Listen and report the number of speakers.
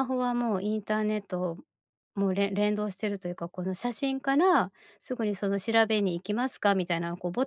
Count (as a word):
one